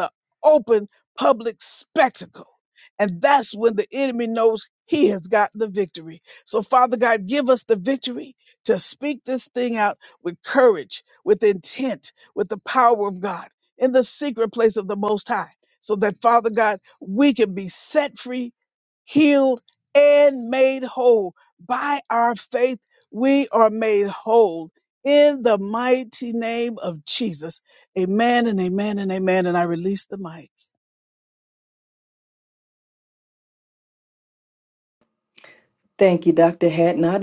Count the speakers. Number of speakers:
two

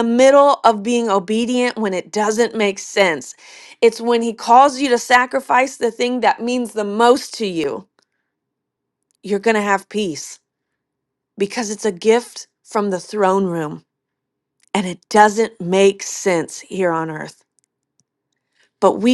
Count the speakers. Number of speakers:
one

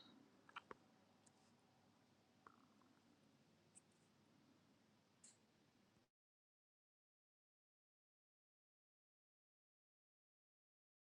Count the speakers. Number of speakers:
zero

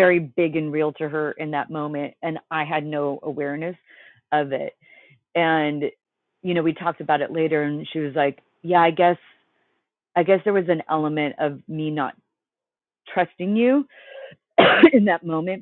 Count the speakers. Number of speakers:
one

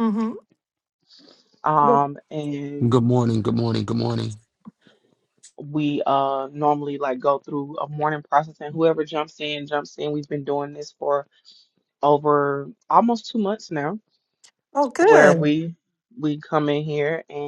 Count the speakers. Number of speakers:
three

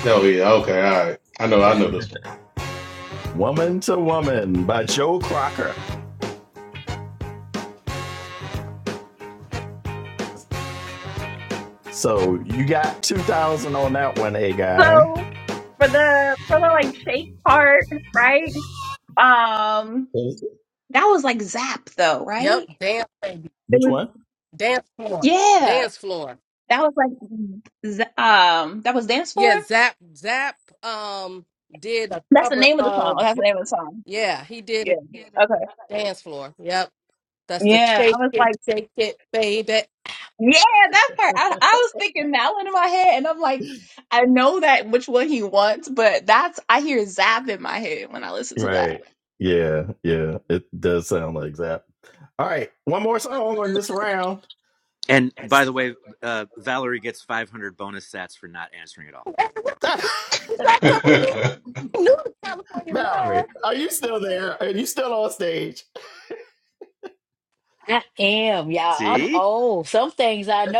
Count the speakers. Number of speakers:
six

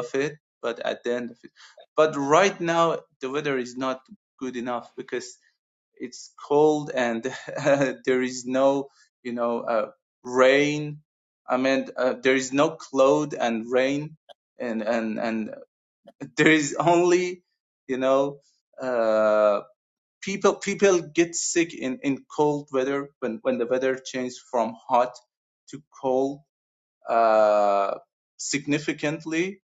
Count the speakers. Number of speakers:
one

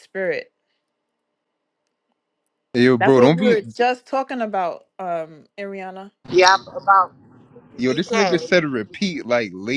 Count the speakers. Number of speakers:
three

